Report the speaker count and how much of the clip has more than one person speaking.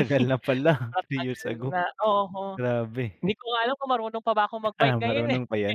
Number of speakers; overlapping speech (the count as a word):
two, about 30%